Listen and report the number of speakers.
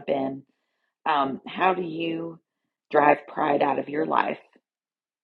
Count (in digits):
1